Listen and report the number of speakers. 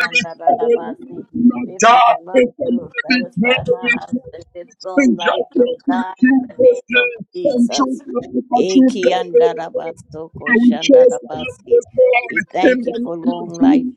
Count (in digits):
2